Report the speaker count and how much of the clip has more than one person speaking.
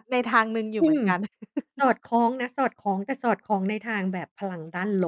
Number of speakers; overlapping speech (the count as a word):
two, about 5%